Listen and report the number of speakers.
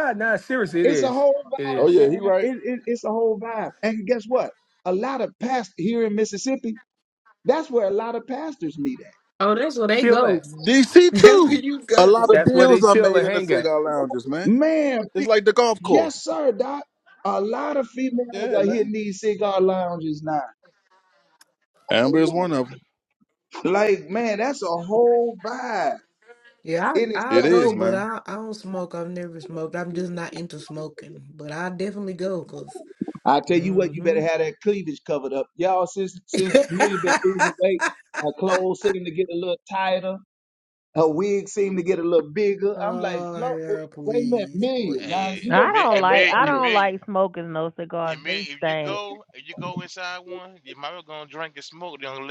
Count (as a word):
six